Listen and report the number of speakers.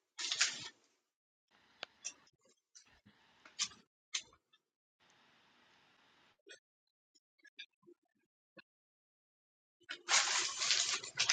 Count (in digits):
0